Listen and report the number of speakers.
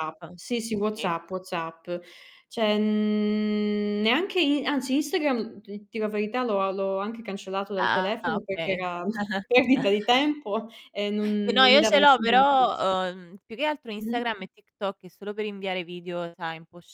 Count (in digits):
2